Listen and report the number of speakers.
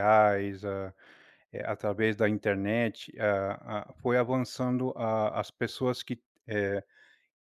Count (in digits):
1